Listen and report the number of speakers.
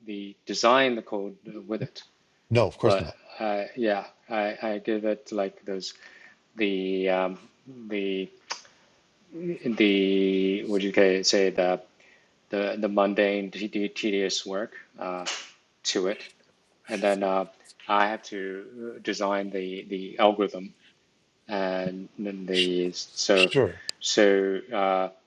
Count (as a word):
two